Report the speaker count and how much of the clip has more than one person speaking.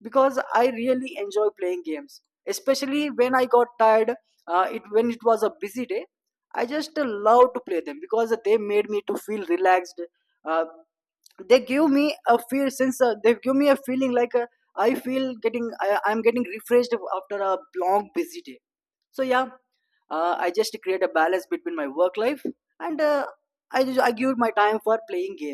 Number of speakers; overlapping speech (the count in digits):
1, no overlap